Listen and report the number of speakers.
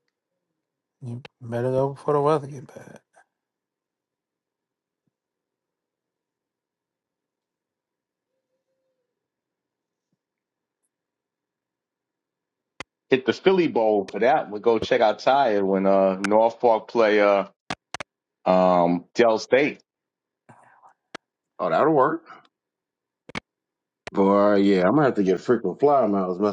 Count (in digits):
3